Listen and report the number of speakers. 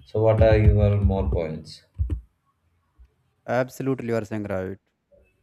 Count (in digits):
2